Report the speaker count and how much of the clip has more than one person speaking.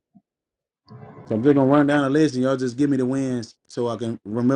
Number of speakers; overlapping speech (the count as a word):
one, no overlap